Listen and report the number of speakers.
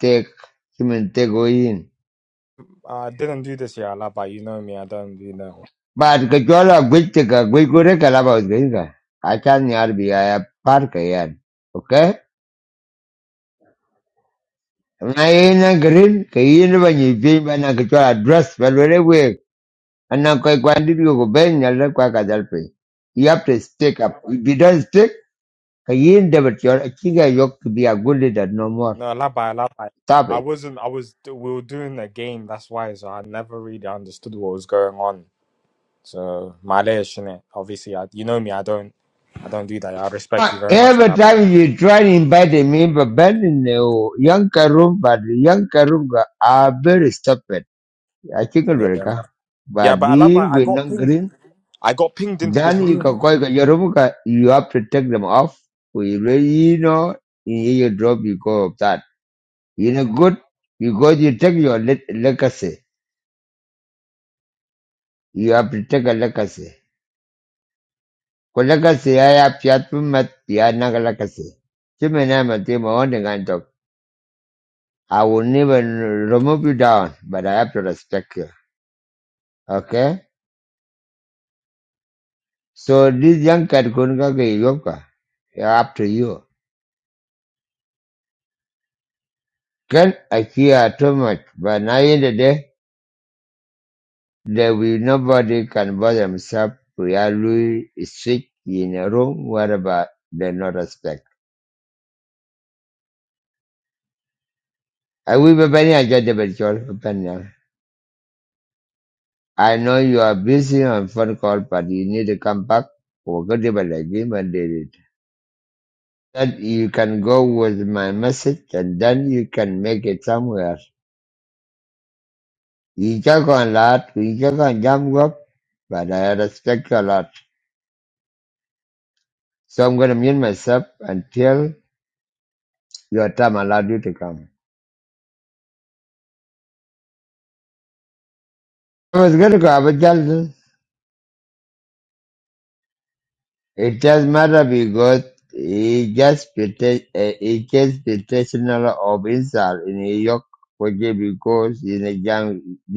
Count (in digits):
2